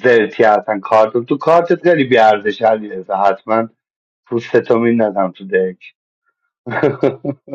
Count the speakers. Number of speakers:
1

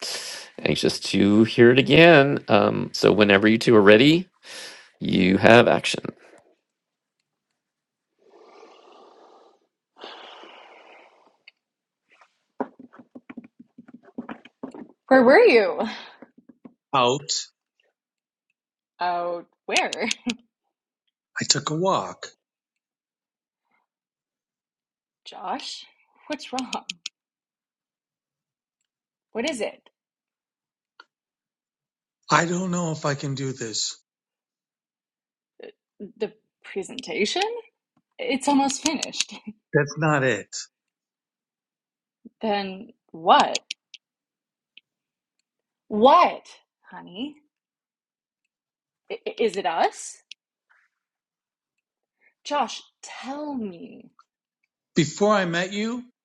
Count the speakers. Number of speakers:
3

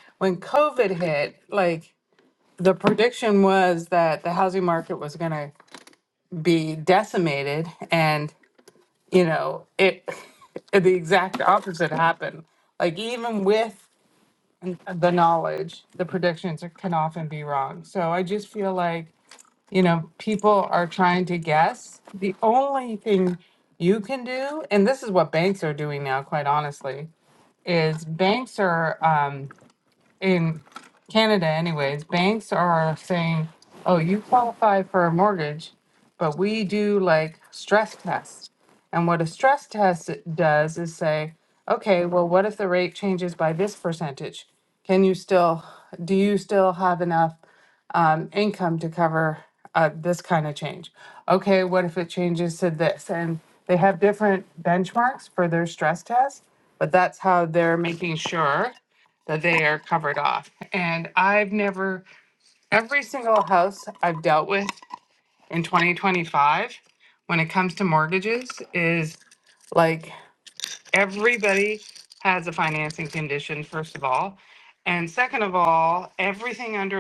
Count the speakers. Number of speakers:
1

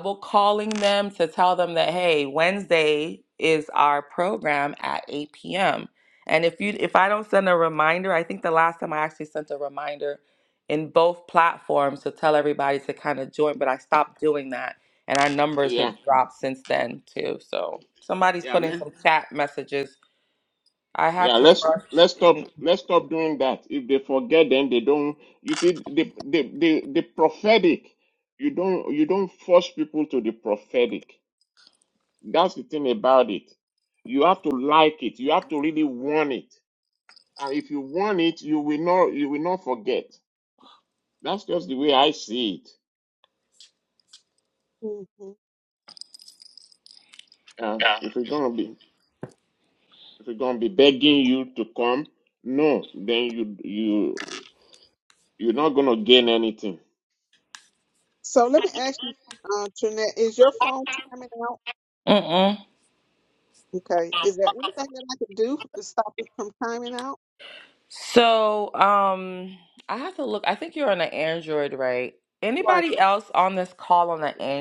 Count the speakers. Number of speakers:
3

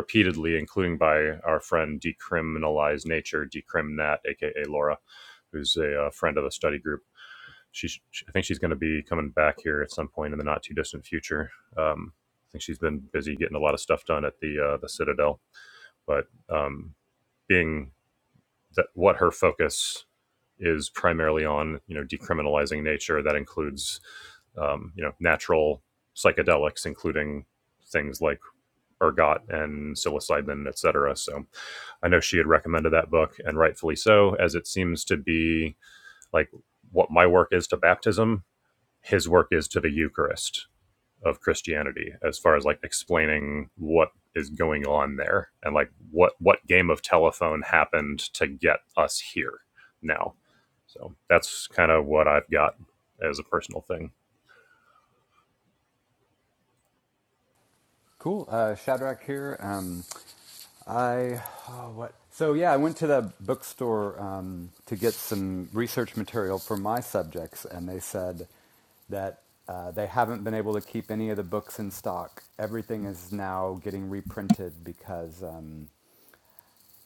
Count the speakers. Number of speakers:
2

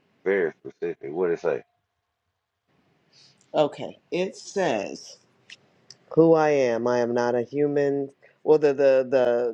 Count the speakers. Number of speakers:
2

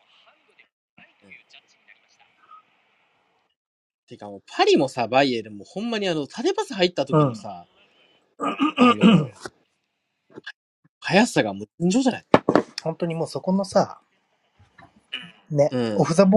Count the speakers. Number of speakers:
2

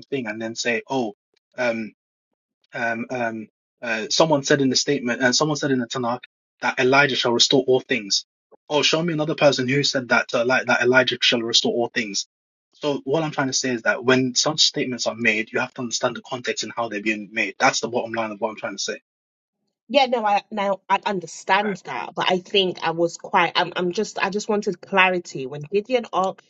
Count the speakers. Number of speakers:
2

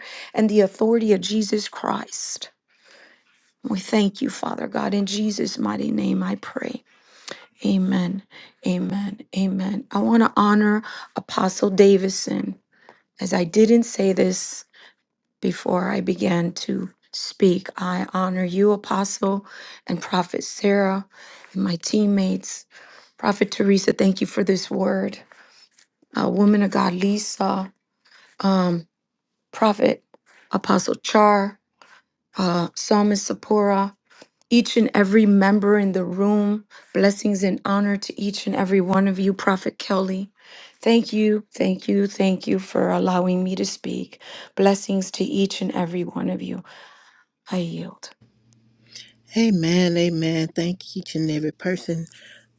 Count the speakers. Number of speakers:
2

